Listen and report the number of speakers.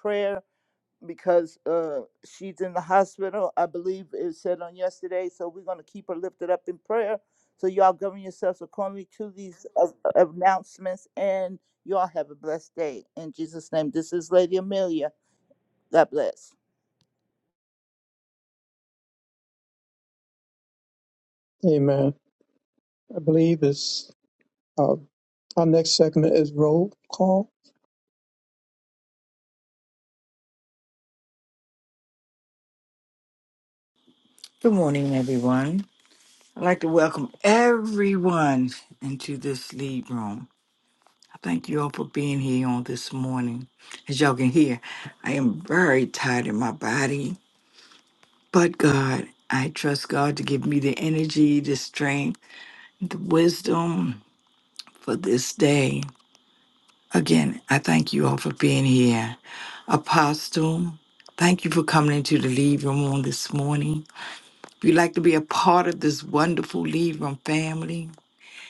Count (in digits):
3